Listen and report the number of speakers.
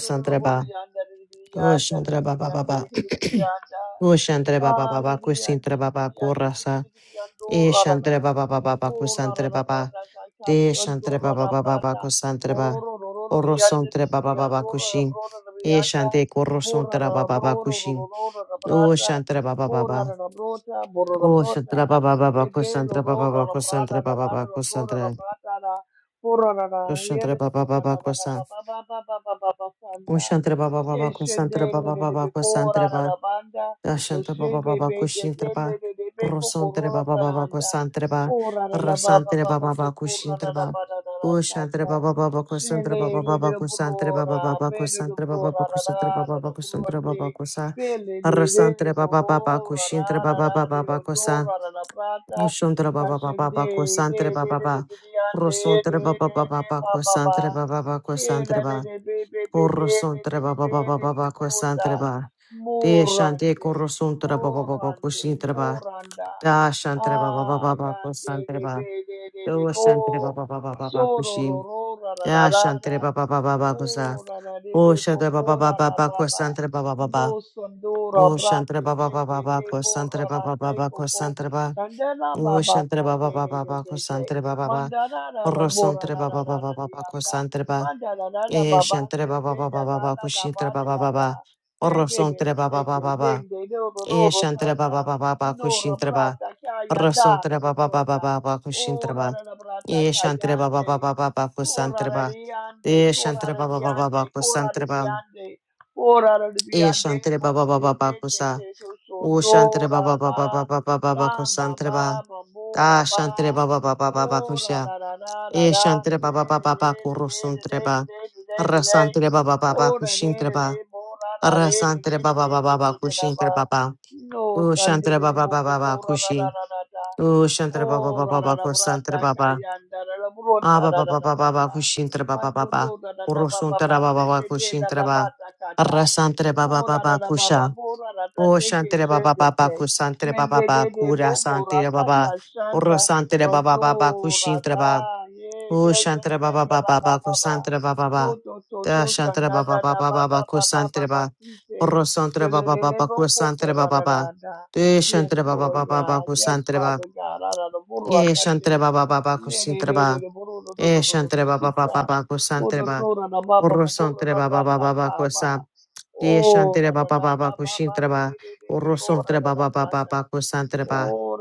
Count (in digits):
2